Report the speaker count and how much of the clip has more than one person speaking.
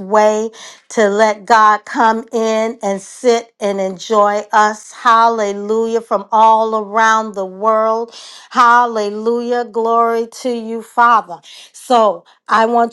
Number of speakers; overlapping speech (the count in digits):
1, no overlap